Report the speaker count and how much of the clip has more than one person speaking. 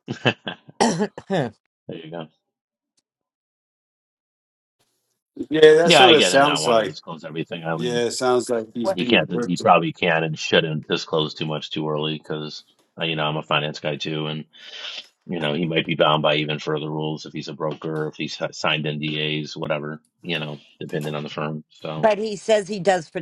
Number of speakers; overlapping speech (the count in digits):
3, about 10%